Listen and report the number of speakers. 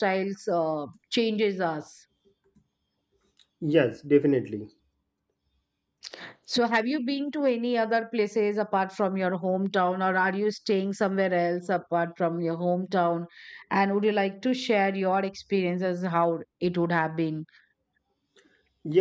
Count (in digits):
2